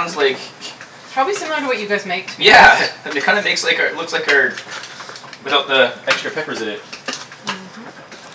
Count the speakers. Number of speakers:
2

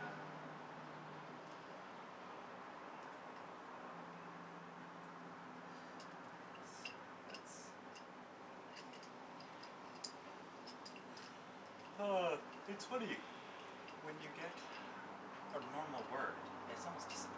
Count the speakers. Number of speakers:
1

